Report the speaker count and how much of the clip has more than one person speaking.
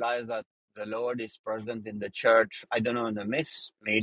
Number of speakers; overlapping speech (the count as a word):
one, no overlap